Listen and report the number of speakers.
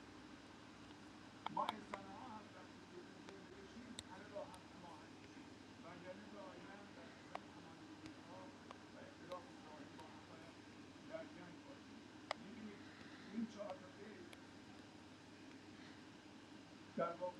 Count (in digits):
0